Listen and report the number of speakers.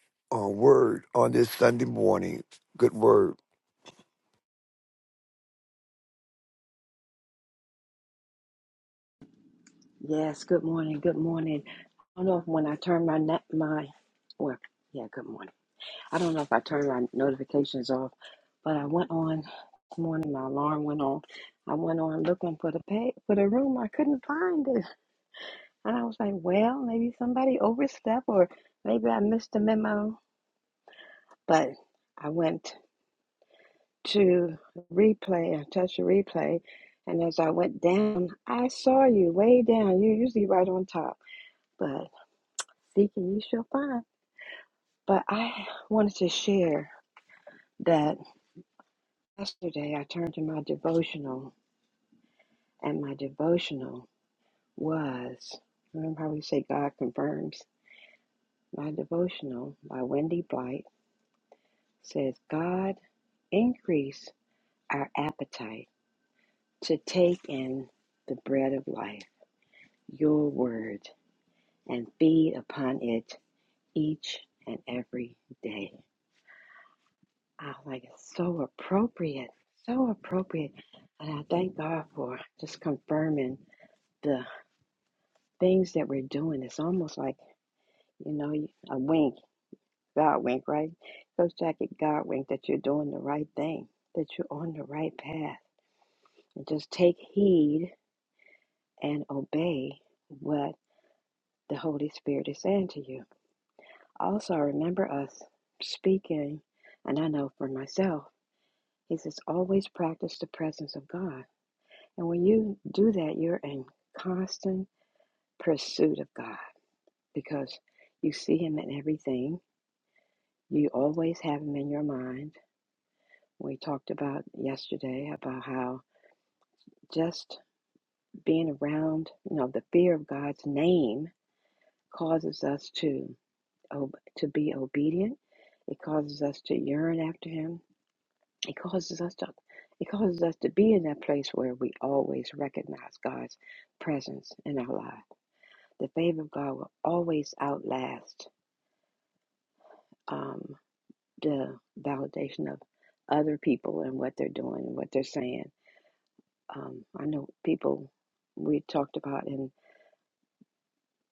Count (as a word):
two